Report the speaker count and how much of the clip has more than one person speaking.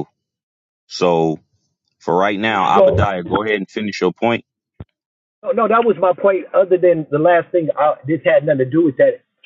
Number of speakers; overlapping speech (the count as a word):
two, about 4%